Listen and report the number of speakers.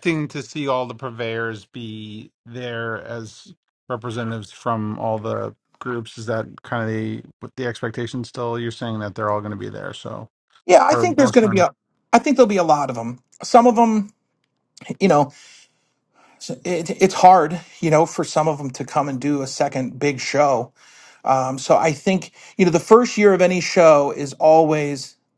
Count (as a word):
two